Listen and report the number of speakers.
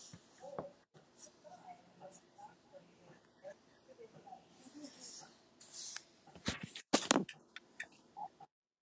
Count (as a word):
zero